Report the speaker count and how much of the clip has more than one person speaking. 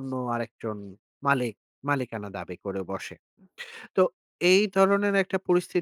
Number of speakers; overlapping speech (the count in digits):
1, no overlap